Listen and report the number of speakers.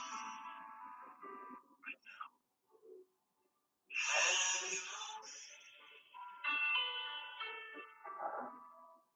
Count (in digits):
0